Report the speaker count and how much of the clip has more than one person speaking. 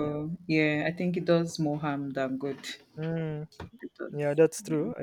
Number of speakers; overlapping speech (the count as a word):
two, about 9%